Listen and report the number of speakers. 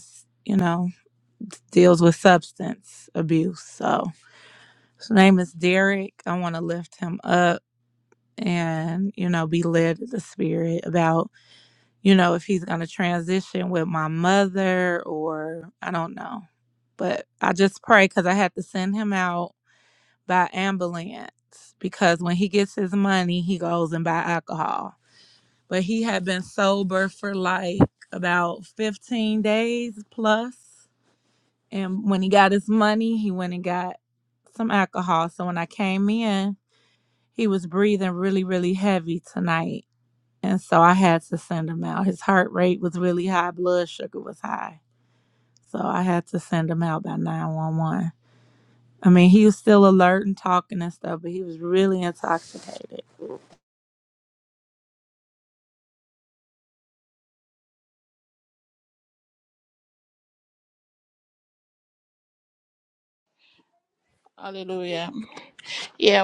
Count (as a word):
two